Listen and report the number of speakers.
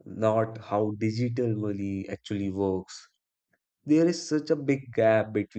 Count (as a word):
one